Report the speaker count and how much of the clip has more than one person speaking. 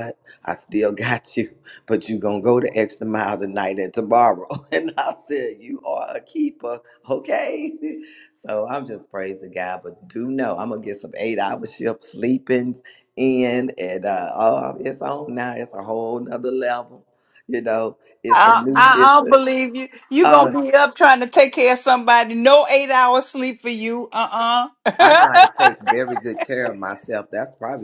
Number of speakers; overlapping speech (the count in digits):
2, about 7%